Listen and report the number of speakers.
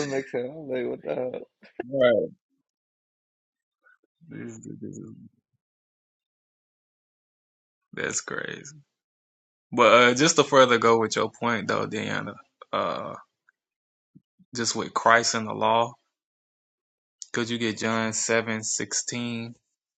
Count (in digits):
2